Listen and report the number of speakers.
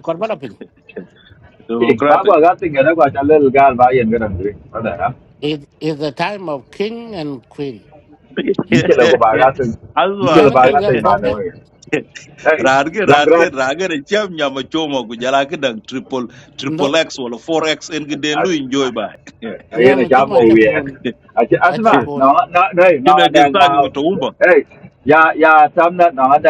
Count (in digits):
3